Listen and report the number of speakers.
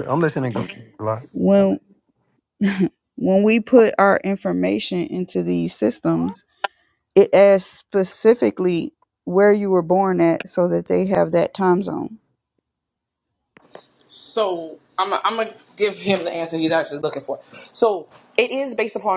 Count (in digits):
3